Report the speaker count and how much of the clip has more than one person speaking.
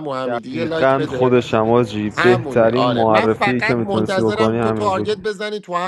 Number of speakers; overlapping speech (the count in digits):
2, about 70%